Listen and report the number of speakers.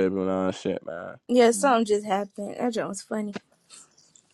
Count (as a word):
two